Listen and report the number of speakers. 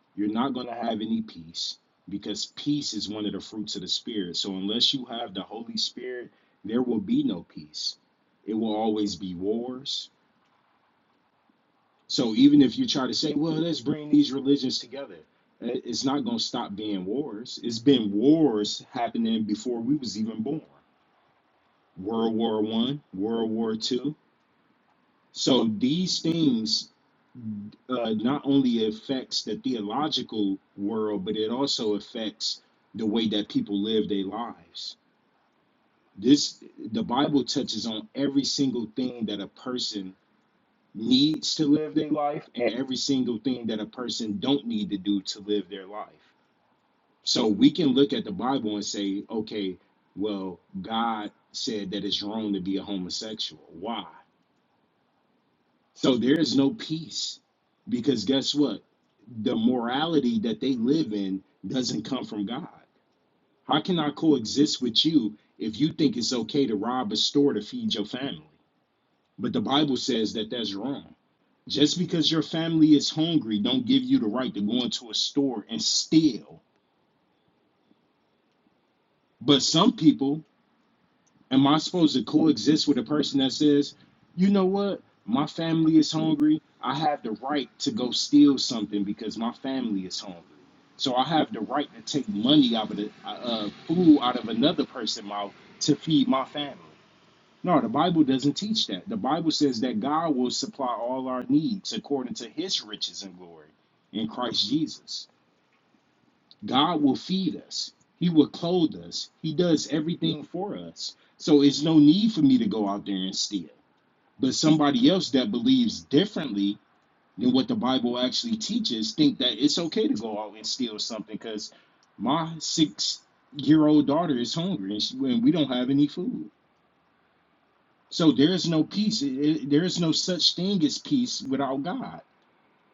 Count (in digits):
1